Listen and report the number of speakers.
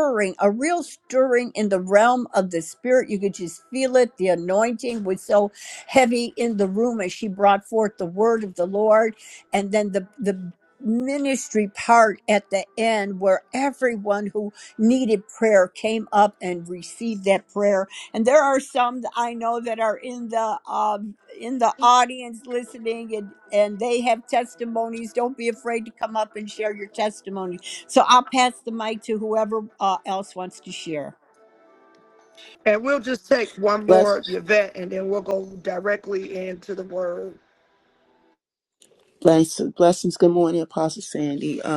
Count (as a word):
three